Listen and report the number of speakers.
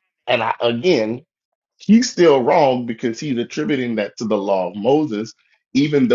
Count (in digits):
1